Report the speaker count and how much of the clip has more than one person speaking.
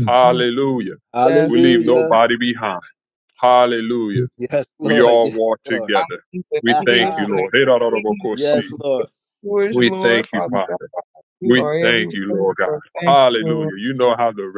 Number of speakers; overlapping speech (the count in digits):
3, about 48%